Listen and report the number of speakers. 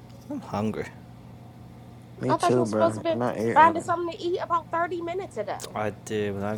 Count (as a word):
three